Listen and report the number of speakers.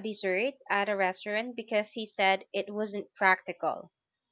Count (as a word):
one